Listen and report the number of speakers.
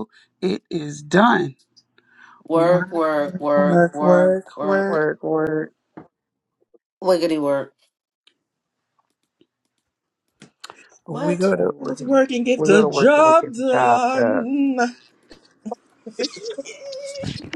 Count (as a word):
four